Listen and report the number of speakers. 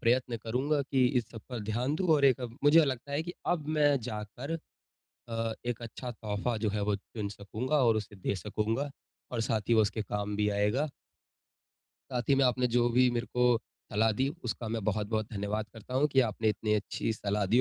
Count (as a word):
one